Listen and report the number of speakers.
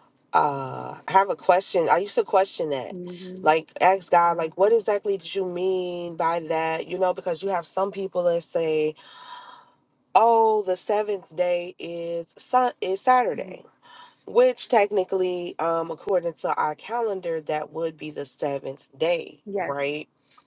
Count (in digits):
2